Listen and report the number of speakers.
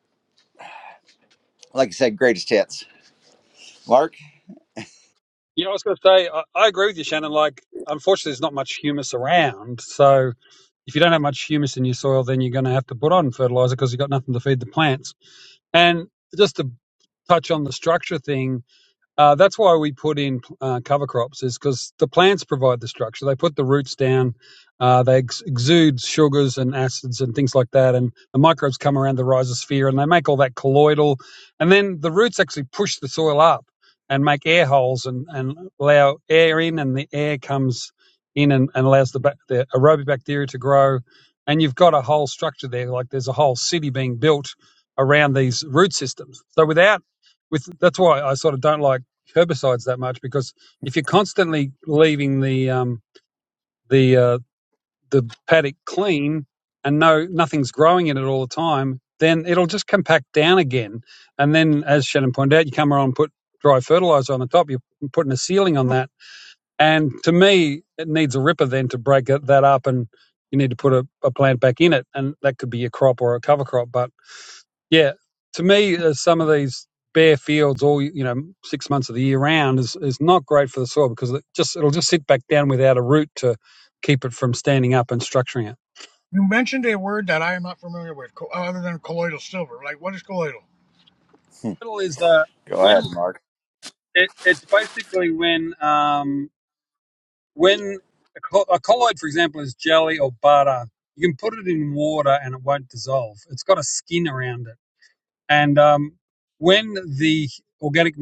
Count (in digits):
3